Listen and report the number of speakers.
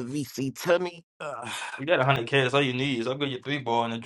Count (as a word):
two